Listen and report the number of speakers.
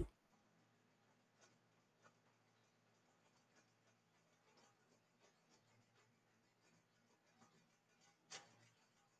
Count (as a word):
zero